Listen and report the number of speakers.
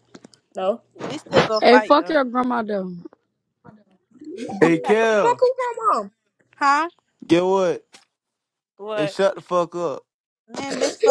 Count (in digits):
4